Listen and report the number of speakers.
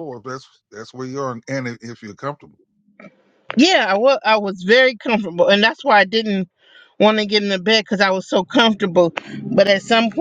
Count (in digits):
2